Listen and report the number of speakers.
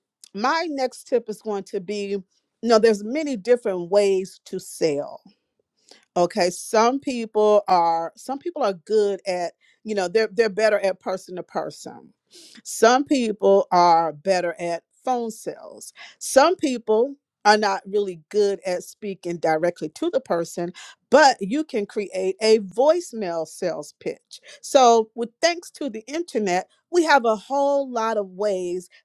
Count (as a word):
one